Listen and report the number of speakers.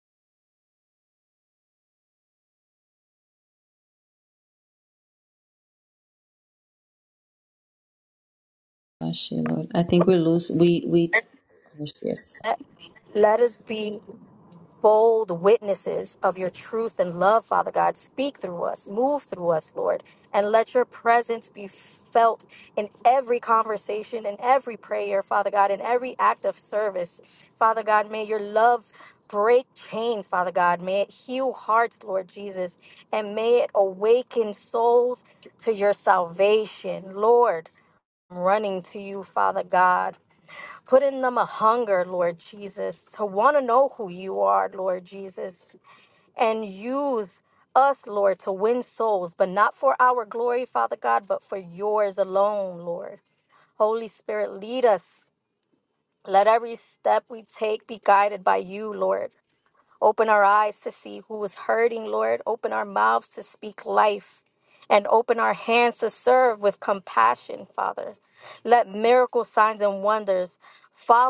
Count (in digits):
2